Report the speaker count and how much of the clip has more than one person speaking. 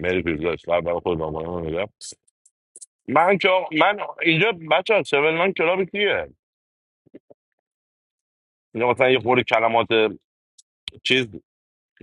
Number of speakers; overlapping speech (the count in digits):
1, no overlap